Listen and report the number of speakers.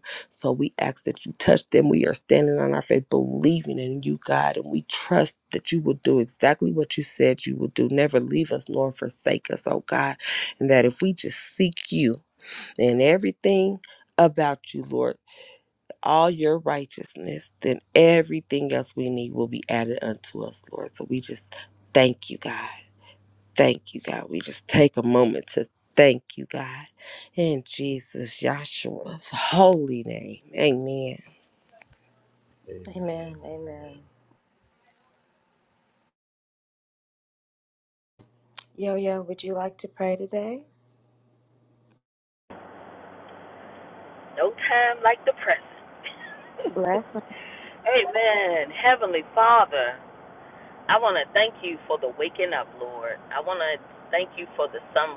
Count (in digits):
3